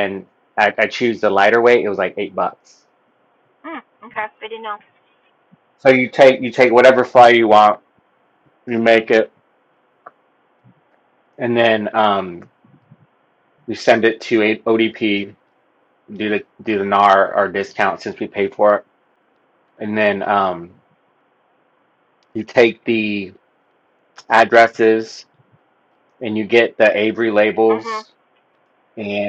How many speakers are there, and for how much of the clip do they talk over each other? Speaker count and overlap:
two, under 1%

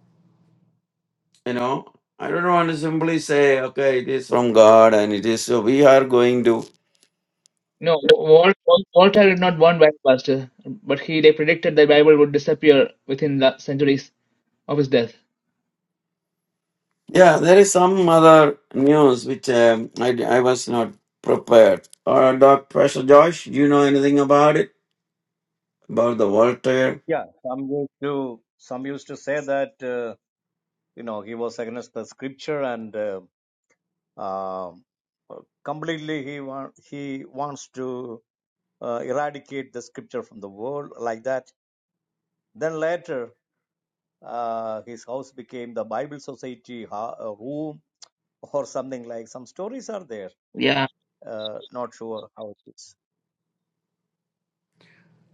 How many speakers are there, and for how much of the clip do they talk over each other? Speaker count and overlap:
three, no overlap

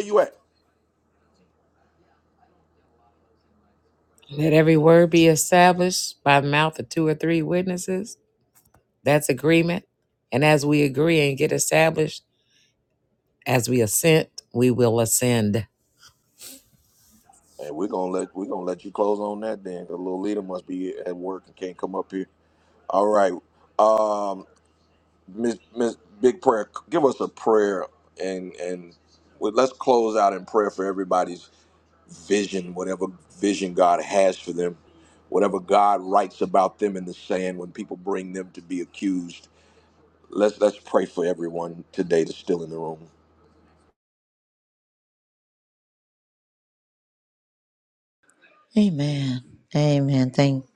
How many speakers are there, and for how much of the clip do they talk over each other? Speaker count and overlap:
three, no overlap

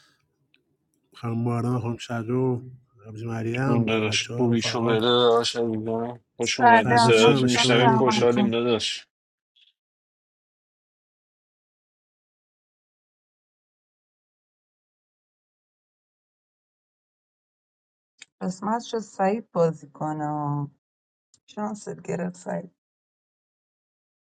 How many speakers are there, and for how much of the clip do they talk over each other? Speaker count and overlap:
three, about 13%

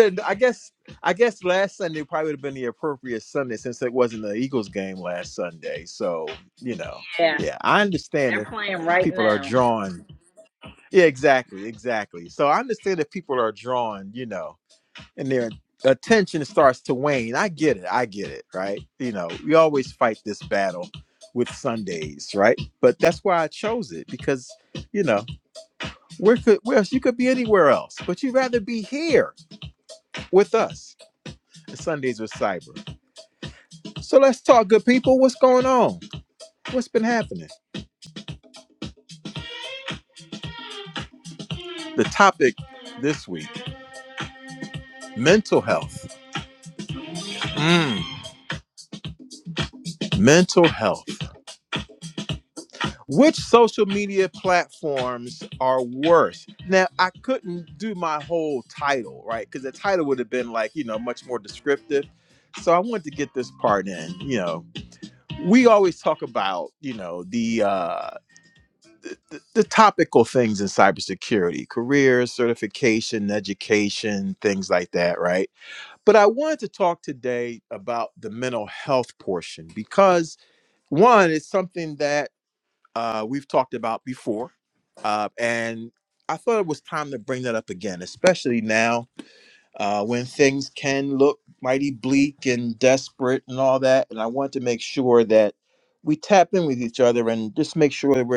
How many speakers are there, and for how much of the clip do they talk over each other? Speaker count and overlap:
two, about 1%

